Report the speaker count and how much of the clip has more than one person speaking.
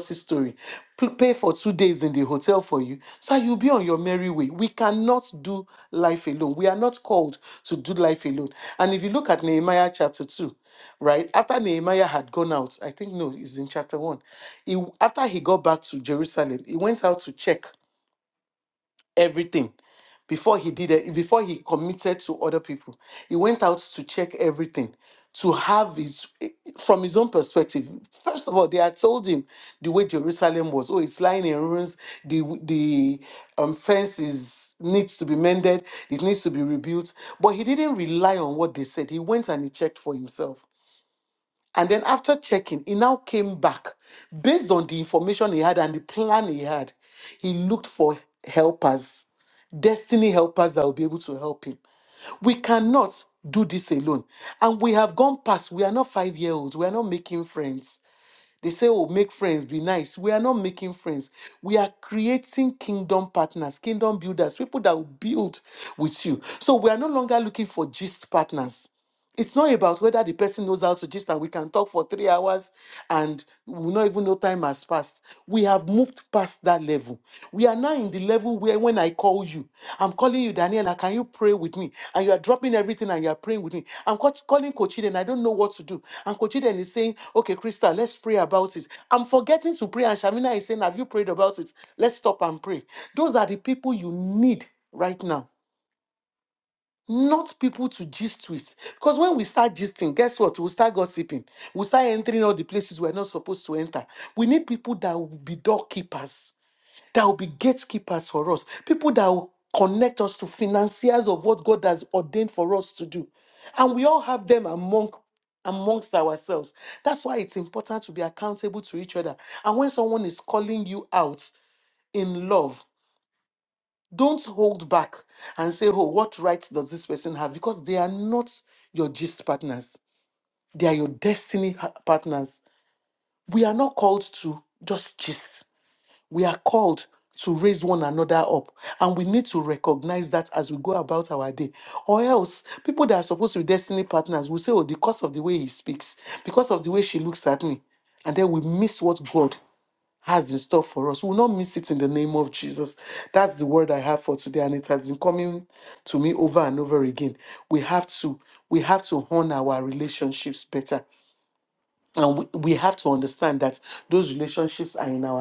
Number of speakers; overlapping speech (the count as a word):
one, no overlap